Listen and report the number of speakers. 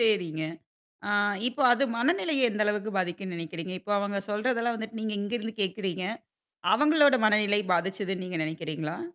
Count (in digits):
1